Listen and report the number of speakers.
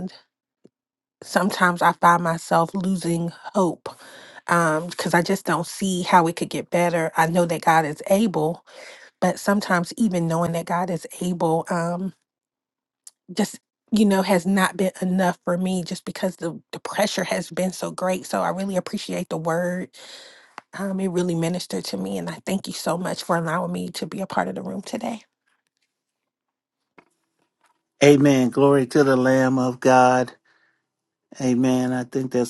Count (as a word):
two